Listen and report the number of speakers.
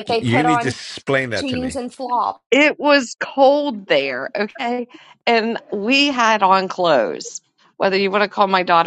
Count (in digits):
3